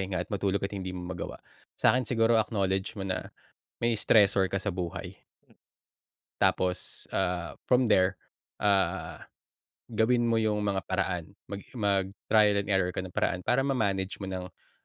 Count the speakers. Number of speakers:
1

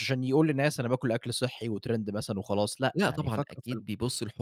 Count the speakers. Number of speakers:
2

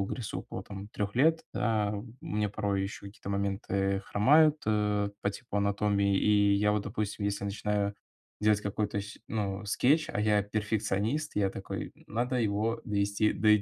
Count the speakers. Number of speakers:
1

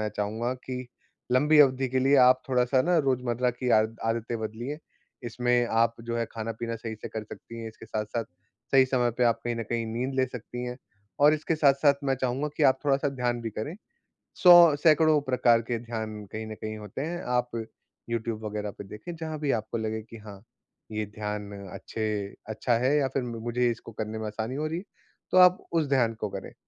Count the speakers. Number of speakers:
1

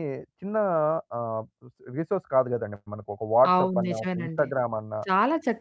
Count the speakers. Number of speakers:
2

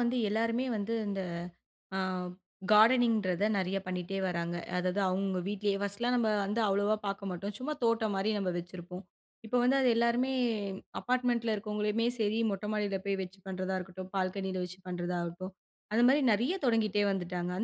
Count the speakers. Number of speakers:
1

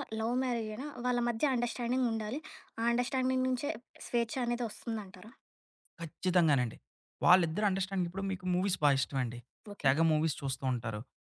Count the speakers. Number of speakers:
2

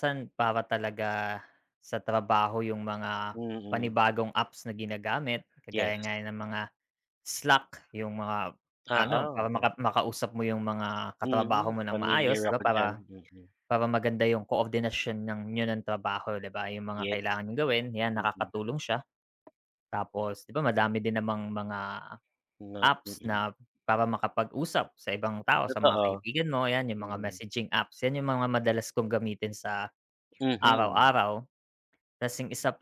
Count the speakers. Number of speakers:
2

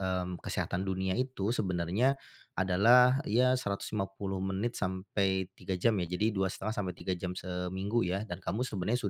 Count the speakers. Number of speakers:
1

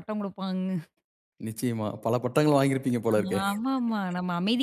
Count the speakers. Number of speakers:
2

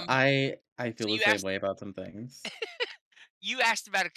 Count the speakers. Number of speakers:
2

